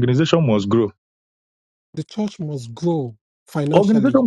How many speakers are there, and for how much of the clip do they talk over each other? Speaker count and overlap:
2, about 10%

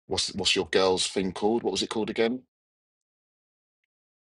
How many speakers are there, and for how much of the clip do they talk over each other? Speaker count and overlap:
1, no overlap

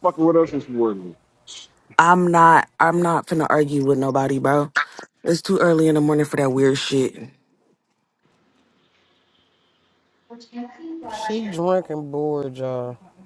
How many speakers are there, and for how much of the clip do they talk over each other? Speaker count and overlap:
3, no overlap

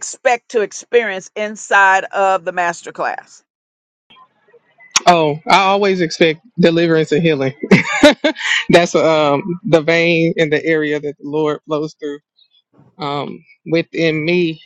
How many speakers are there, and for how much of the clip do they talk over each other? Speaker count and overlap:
2, no overlap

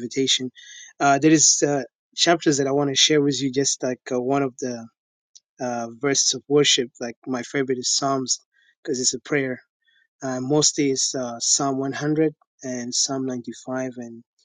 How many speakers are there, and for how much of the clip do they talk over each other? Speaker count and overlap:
1, no overlap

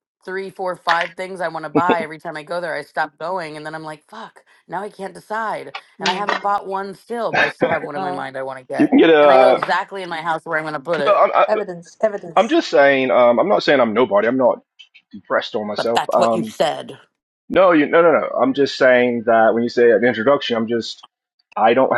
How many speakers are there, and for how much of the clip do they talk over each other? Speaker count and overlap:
3, about 12%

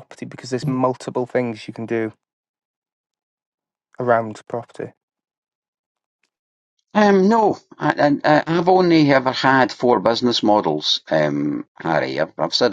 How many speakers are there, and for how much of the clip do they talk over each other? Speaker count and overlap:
2, no overlap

